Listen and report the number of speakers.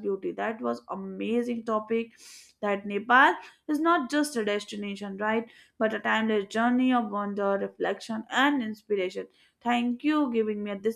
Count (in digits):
1